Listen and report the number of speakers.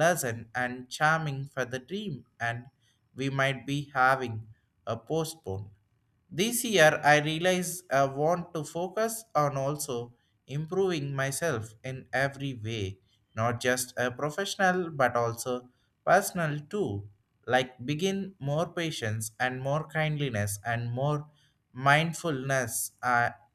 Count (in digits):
1